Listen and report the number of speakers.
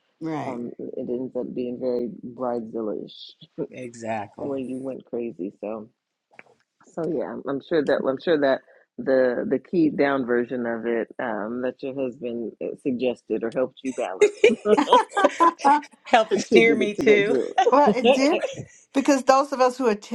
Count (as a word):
three